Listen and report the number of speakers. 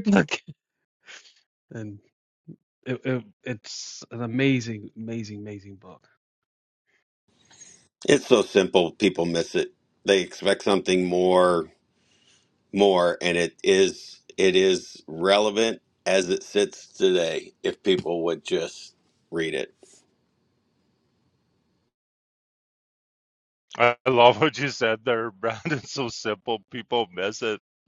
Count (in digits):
3